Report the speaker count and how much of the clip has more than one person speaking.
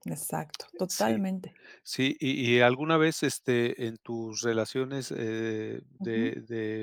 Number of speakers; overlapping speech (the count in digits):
2, about 10%